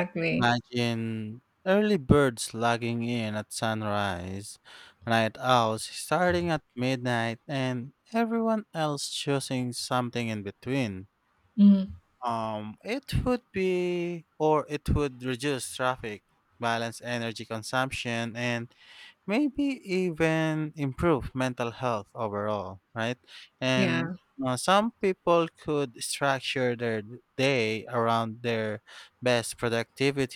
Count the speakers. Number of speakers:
2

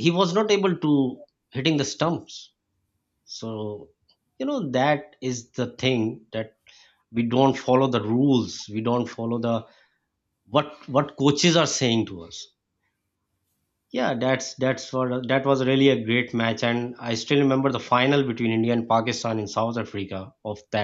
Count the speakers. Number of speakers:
1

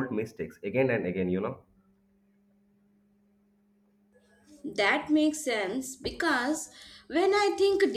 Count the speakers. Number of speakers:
2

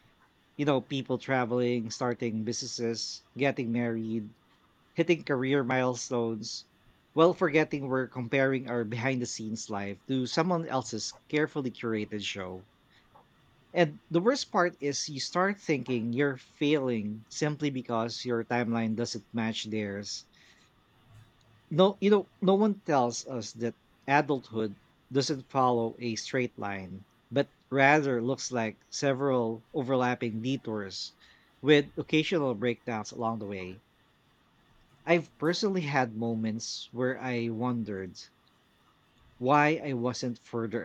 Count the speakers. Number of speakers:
1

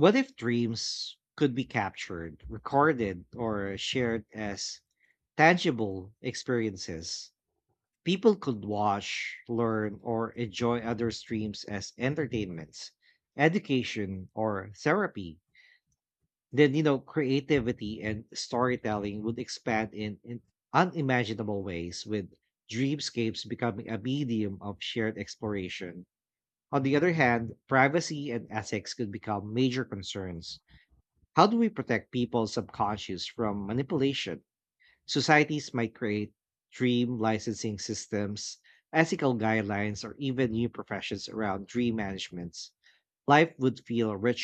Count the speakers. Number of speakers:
1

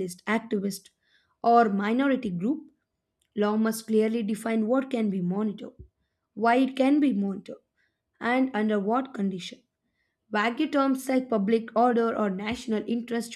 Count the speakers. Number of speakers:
1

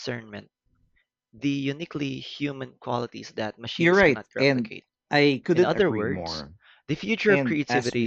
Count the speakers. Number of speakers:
2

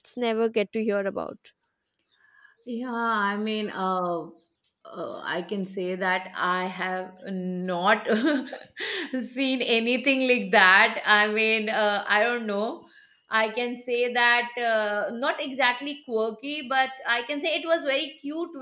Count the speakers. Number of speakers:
2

